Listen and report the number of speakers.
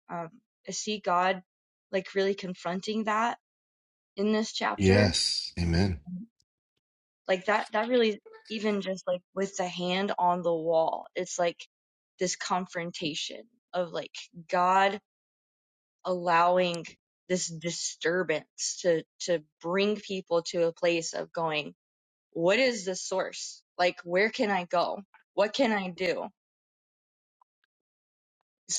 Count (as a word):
two